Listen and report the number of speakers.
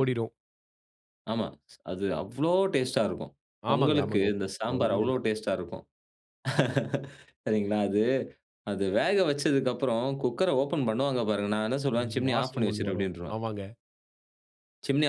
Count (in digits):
2